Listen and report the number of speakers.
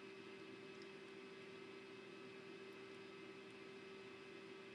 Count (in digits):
0